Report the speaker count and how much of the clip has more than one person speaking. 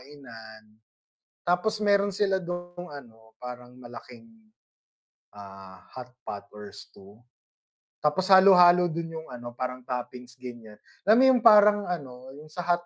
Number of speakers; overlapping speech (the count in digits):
1, no overlap